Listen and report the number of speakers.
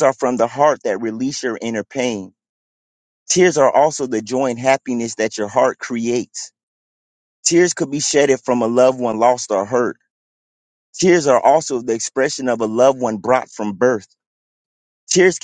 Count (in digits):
1